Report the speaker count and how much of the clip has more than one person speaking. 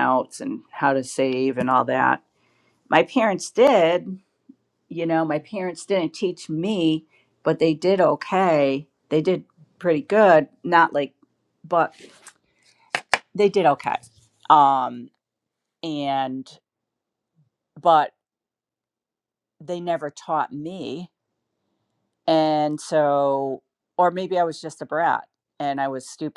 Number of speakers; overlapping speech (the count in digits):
1, no overlap